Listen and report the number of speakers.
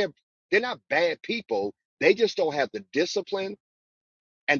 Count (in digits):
1